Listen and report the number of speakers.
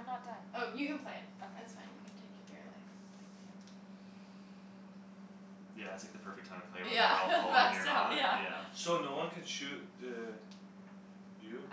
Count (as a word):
four